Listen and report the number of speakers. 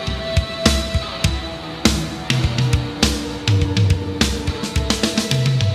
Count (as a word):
zero